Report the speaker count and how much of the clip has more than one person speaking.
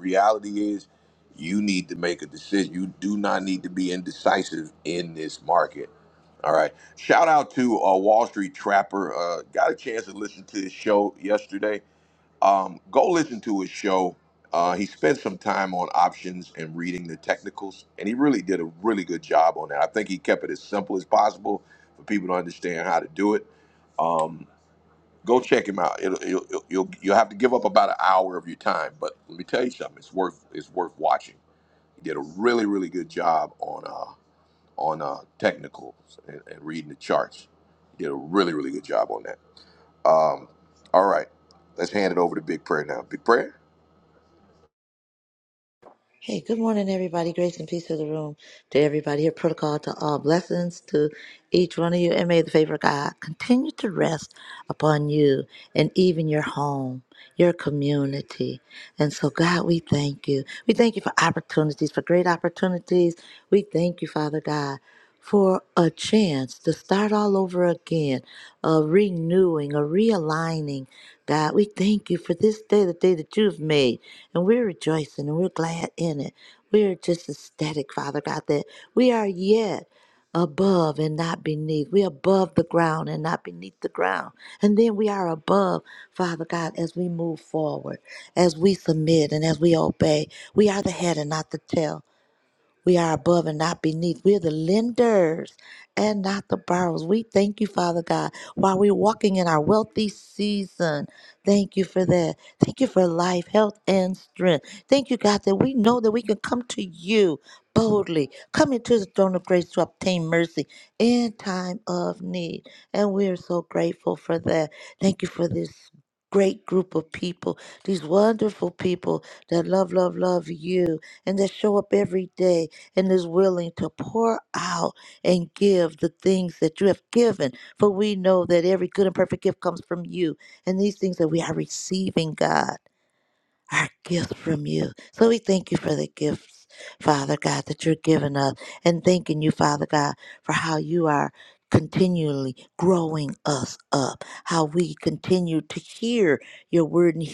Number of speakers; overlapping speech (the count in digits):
2, no overlap